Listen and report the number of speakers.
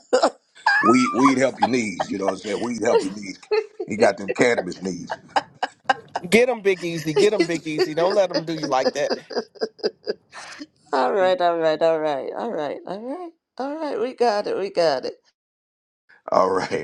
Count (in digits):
3